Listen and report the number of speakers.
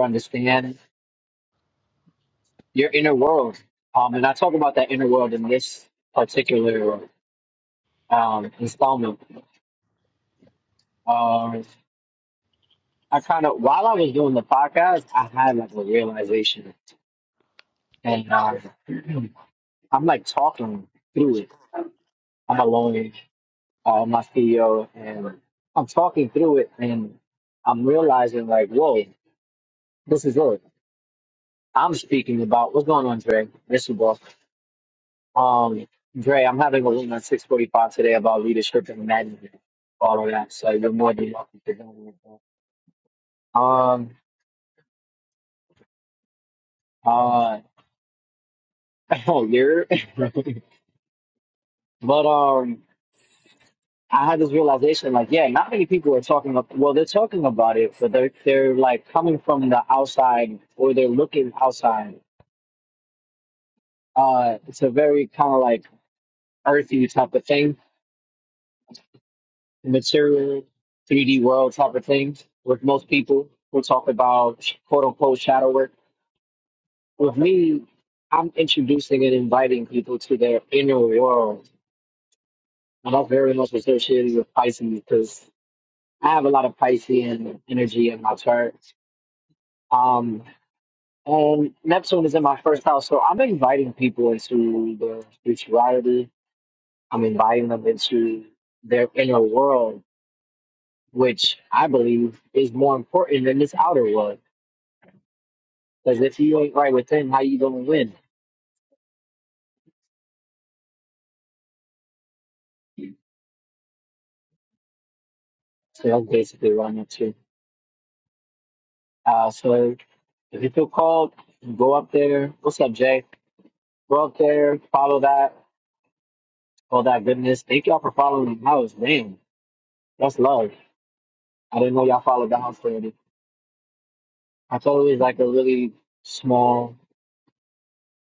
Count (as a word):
one